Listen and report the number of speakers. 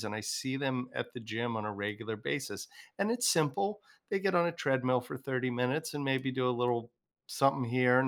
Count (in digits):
1